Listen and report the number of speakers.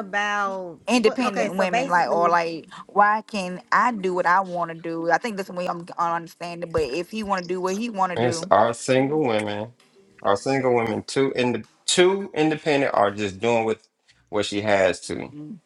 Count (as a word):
three